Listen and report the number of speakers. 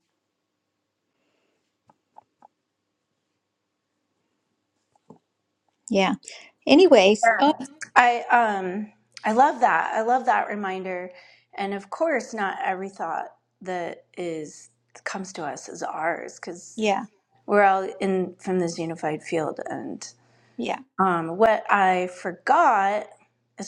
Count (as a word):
two